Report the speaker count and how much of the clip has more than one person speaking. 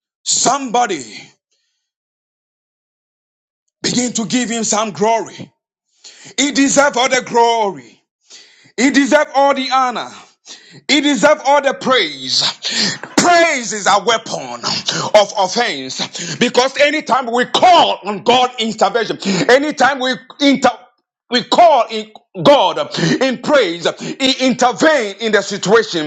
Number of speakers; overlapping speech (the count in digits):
1, no overlap